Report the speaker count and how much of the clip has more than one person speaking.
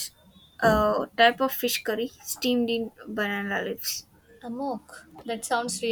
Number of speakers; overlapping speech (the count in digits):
2, no overlap